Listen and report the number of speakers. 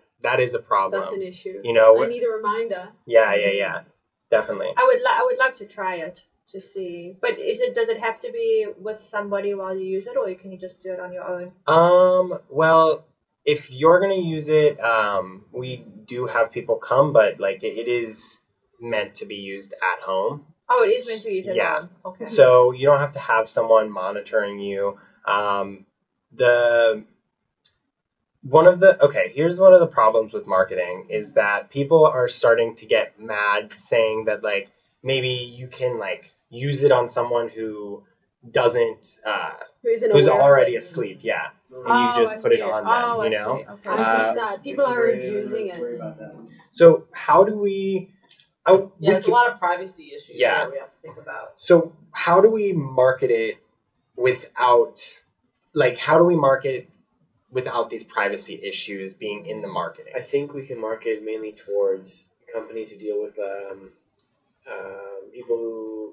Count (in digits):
5